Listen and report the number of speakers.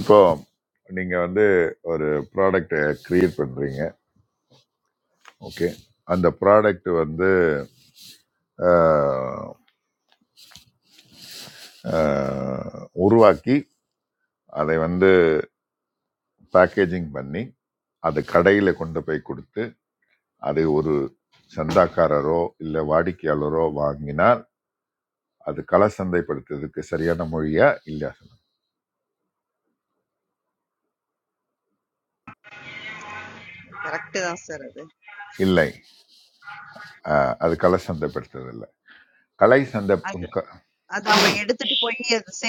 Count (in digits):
2